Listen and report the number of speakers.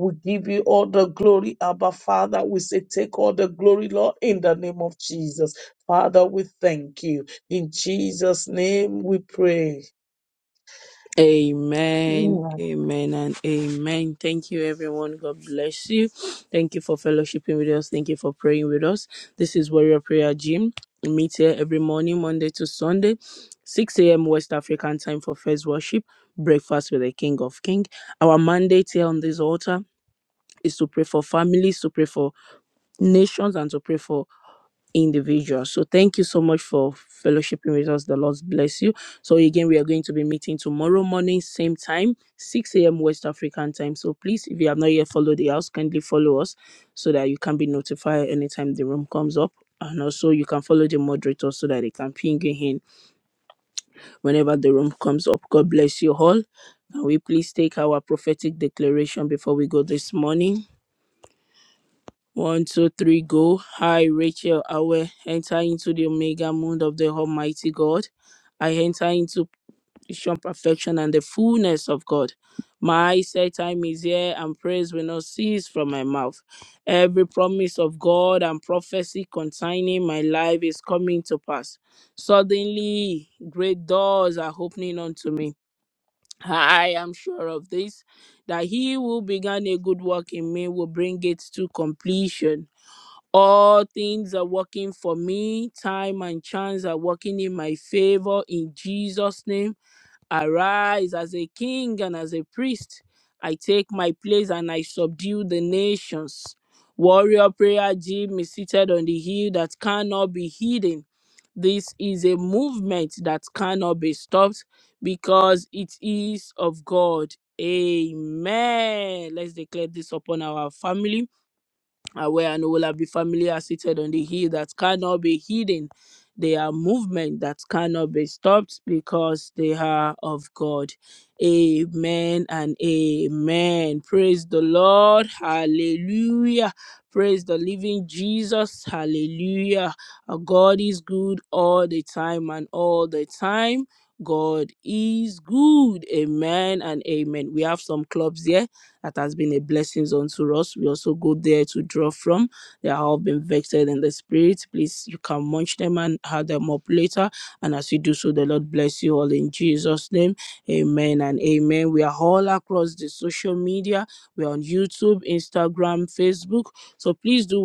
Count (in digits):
2